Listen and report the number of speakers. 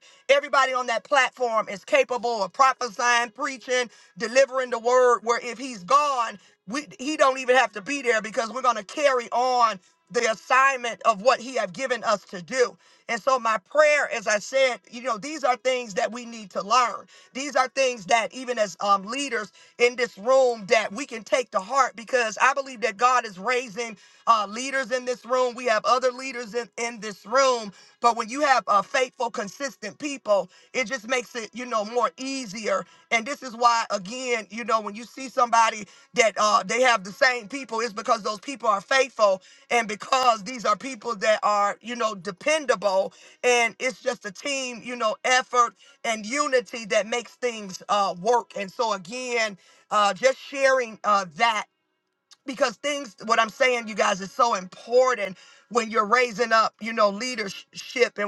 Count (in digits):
1